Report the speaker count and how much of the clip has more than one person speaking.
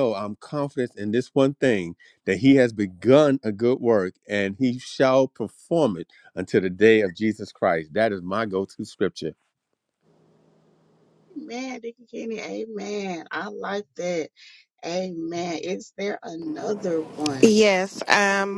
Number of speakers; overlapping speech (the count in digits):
3, about 1%